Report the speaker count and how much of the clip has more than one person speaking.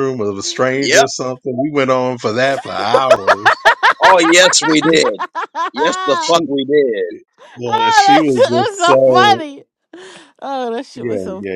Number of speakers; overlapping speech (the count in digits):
3, about 27%